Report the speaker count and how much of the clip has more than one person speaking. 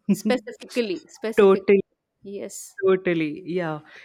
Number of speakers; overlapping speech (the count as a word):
two, about 7%